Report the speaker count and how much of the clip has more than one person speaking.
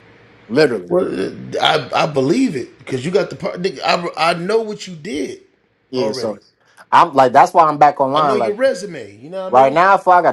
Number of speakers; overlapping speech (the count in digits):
2, about 11%